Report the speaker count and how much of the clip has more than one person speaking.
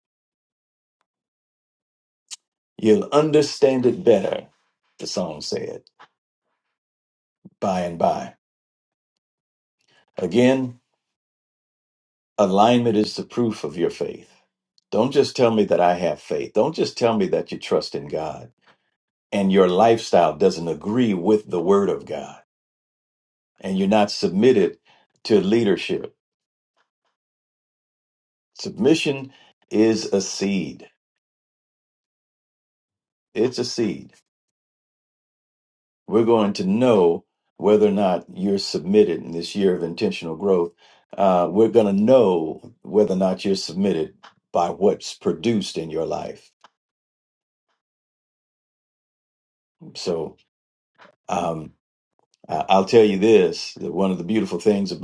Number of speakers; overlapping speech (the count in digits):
1, no overlap